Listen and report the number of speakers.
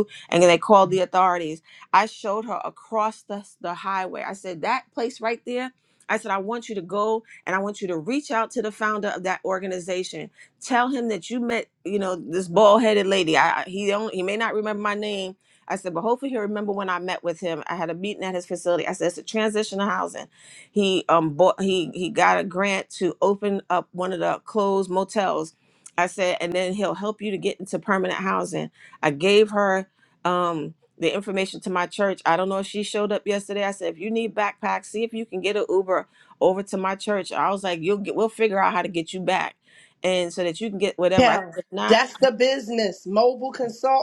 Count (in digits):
2